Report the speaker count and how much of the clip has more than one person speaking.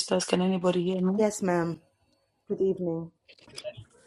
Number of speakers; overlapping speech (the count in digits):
2, about 1%